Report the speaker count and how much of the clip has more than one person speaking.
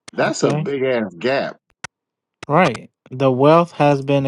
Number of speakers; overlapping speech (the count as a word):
two, about 11%